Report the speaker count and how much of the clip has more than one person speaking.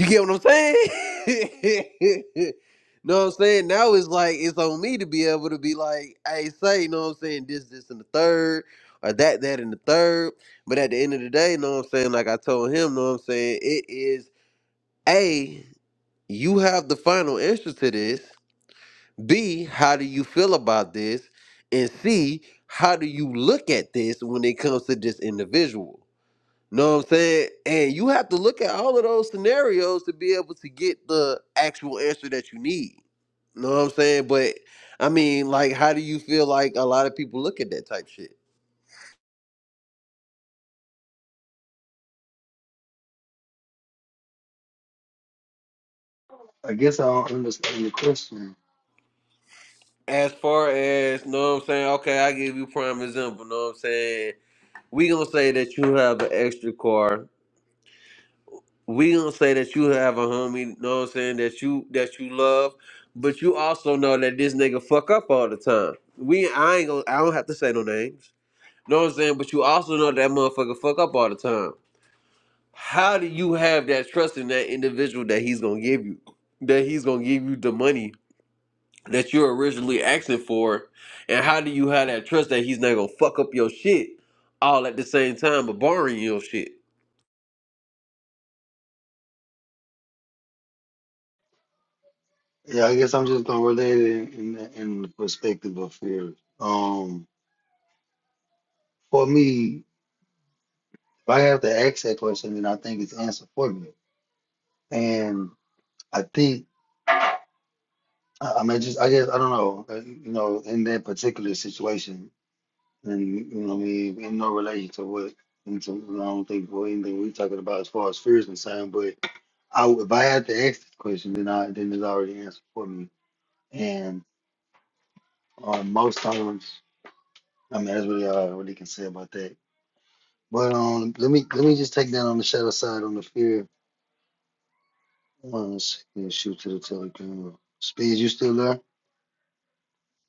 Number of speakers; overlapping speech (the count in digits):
2, no overlap